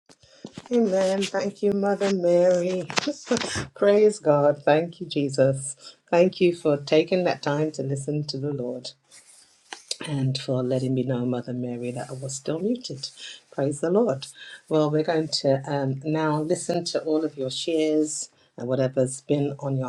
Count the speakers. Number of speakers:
1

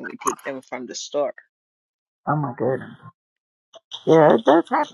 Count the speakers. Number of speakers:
2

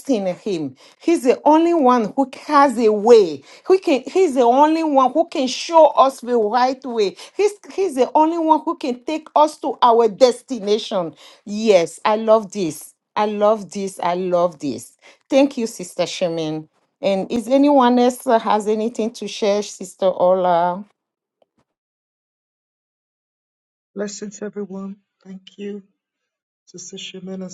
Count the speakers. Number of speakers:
2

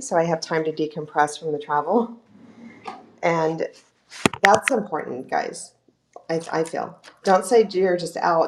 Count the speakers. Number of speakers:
1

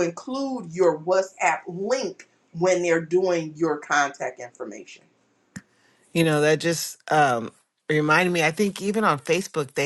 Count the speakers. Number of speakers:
2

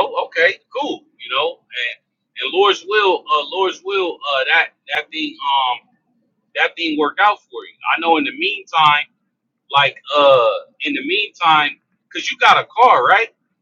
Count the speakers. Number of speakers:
1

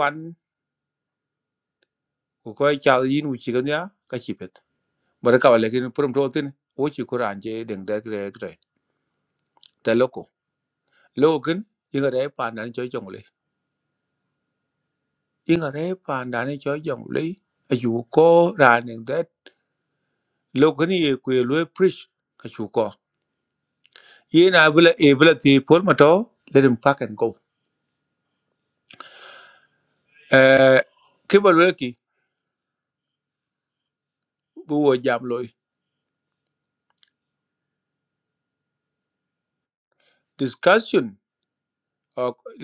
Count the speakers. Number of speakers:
1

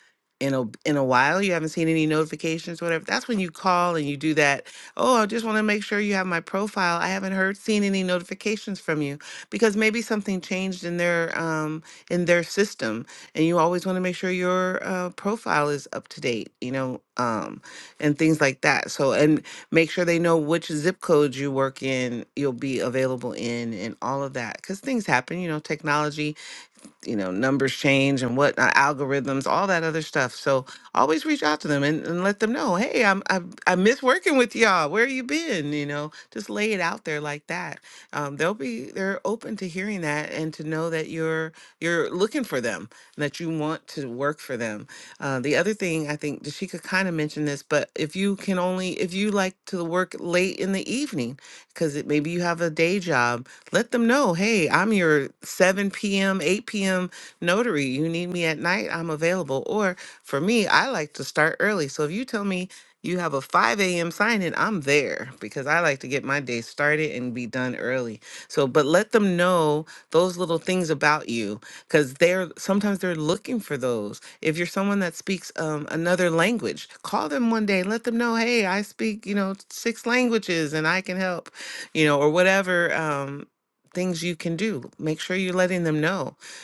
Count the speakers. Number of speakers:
1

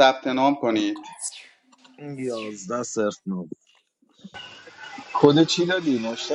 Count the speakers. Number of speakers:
3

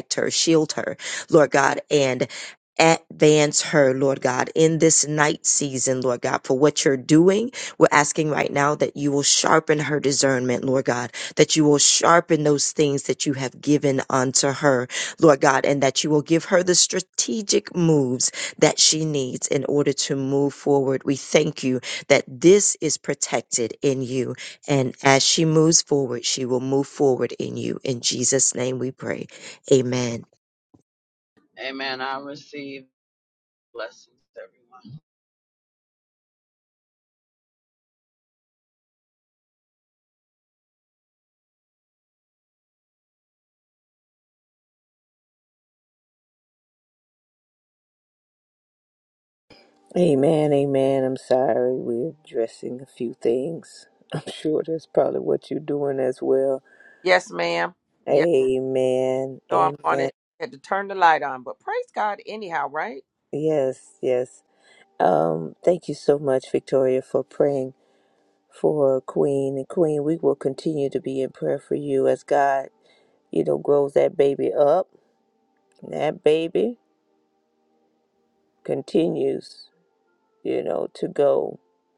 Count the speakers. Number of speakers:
4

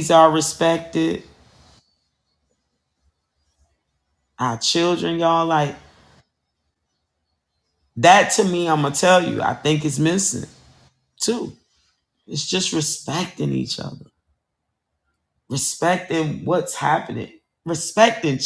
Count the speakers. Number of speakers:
1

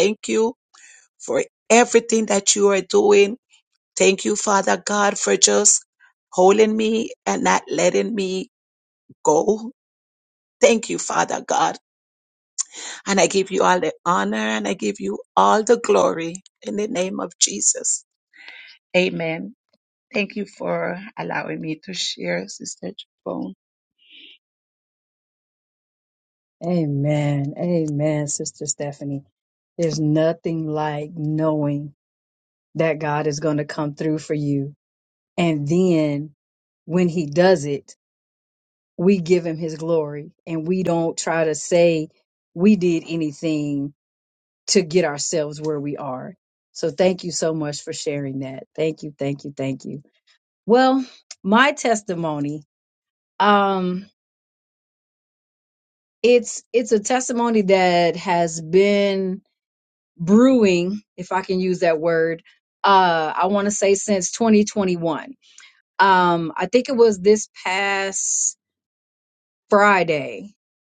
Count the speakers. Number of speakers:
2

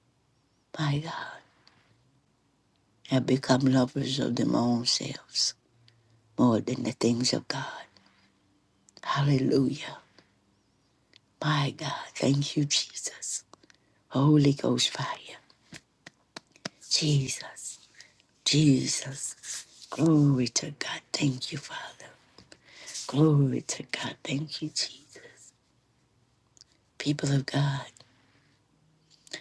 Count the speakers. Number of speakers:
1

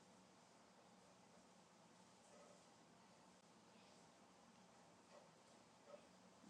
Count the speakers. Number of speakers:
0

